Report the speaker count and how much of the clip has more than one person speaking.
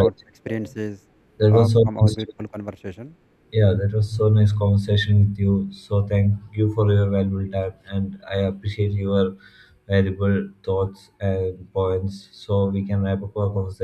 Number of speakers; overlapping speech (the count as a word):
two, about 8%